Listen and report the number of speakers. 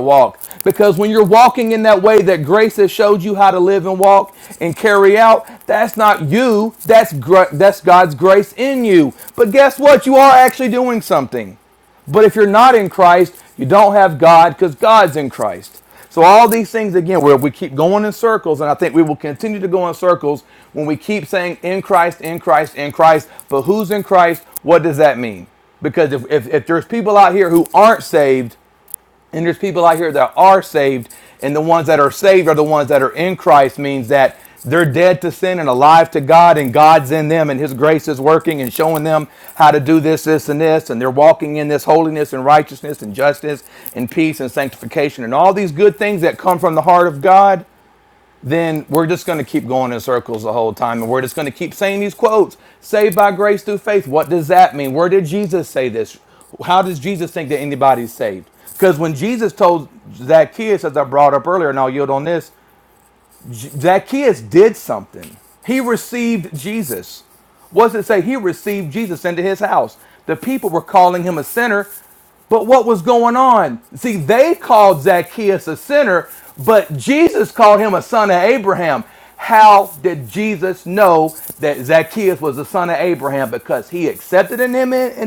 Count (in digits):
1